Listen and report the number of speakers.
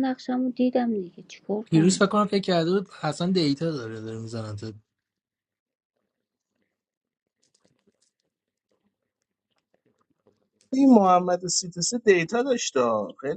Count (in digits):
3